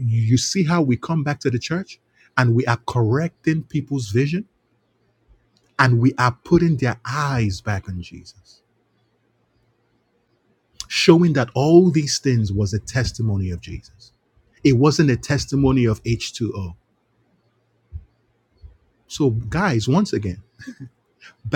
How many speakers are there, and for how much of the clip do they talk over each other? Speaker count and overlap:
1, no overlap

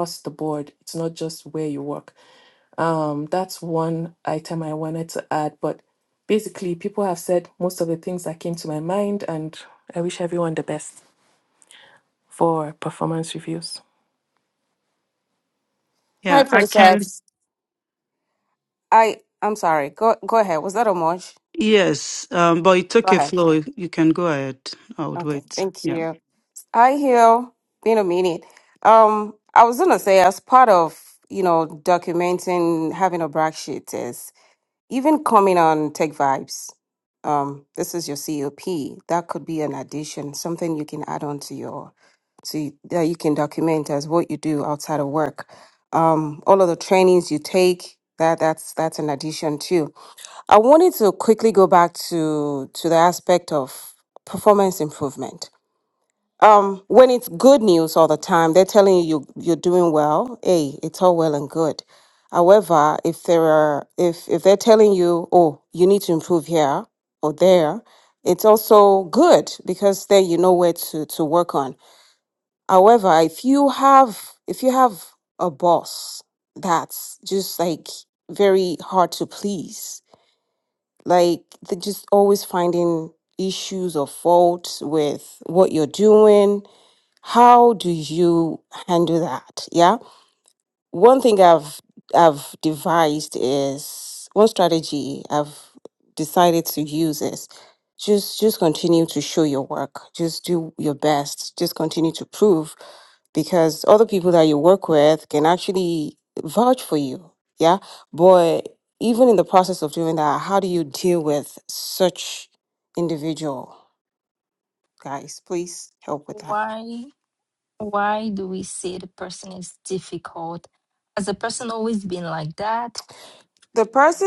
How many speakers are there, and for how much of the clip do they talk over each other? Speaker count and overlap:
4, about 2%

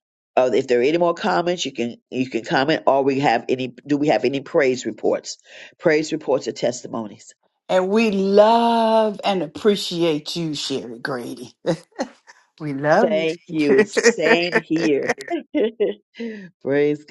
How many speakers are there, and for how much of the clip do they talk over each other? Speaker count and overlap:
2, about 1%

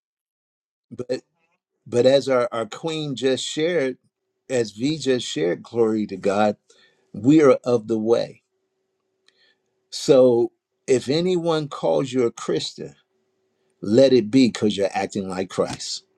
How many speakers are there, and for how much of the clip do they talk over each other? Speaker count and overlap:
1, no overlap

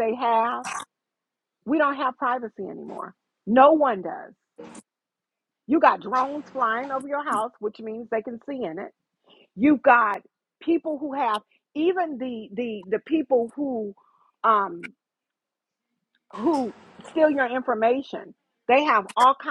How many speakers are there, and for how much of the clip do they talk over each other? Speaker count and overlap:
1, no overlap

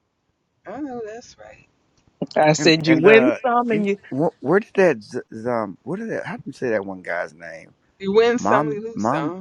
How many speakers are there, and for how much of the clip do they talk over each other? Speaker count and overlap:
3, about 25%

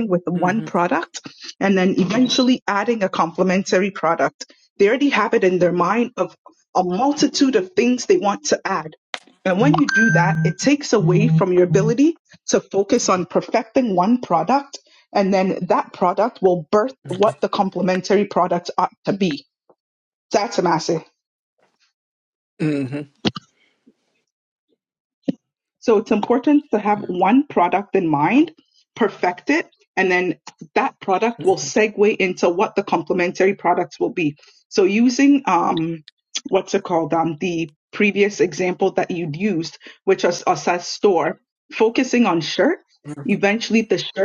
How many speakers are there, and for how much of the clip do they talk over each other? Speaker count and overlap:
2, about 1%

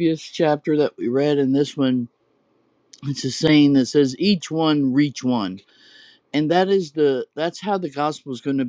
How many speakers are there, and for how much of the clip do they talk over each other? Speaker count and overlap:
1, no overlap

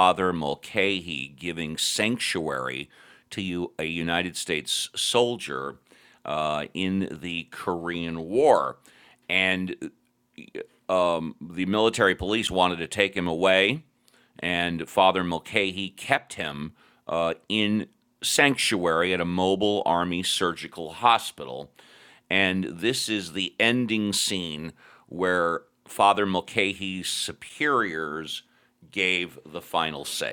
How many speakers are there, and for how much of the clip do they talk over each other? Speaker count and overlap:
1, no overlap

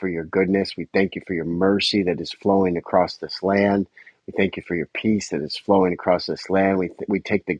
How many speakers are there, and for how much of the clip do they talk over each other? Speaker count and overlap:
1, no overlap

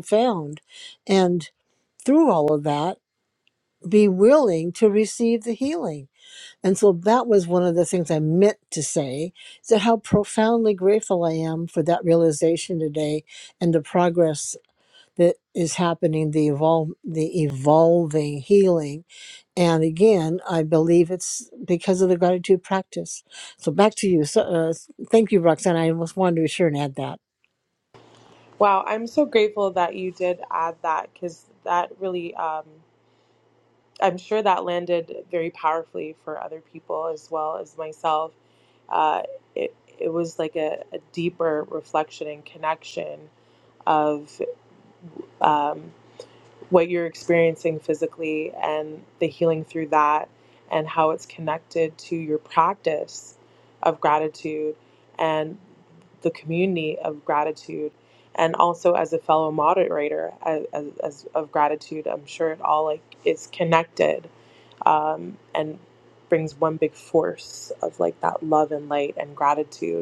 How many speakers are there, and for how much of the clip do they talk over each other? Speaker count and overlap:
2, no overlap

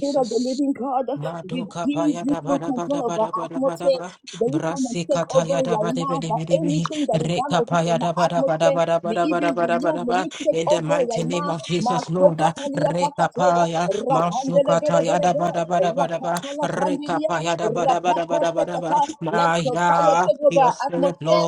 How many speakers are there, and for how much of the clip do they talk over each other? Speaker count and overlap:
2, about 93%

